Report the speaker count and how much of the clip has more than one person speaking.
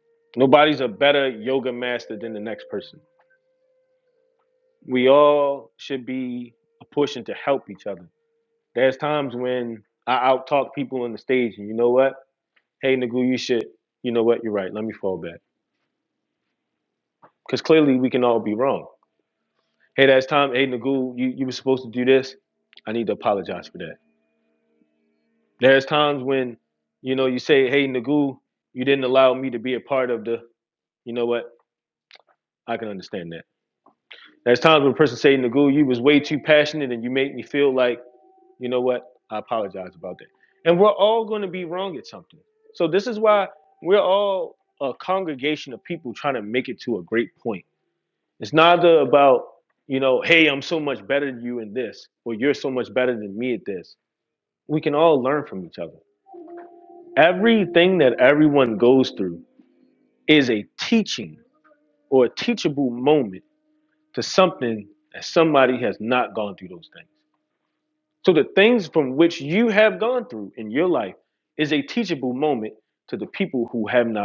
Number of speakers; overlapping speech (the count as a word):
one, no overlap